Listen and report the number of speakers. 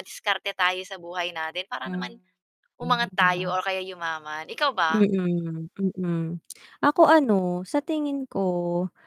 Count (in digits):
2